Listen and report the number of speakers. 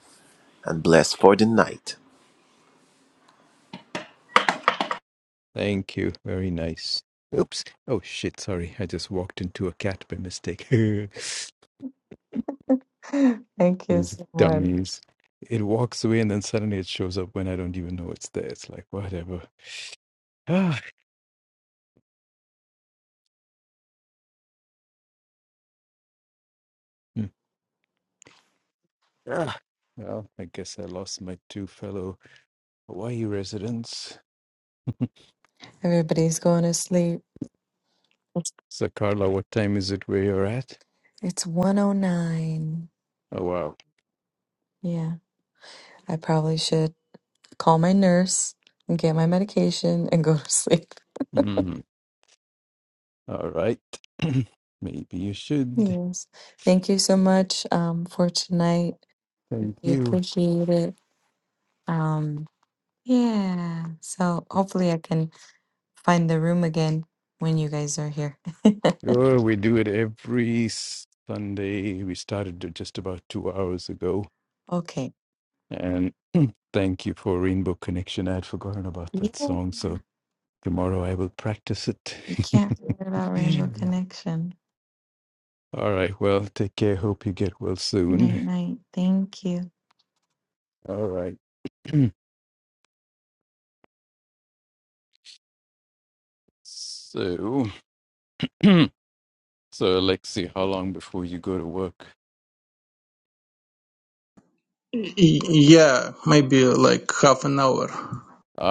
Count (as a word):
four